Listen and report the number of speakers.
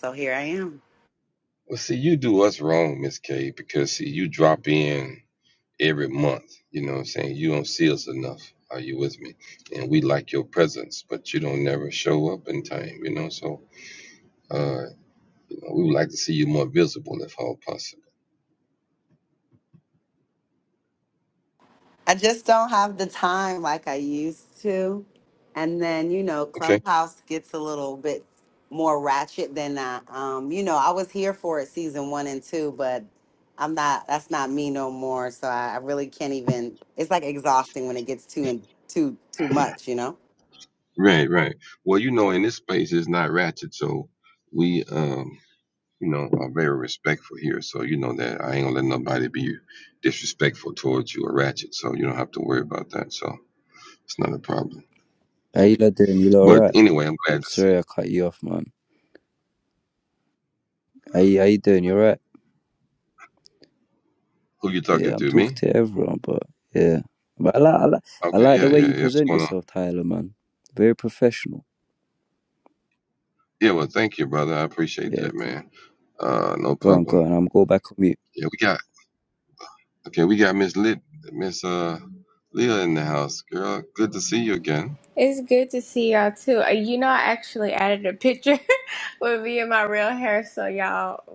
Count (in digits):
4